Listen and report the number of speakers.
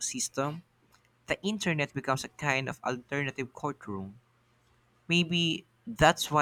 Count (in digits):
1